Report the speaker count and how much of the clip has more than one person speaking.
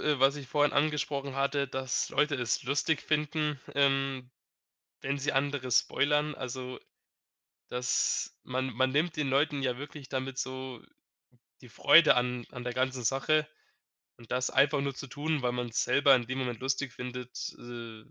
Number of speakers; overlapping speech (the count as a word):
one, no overlap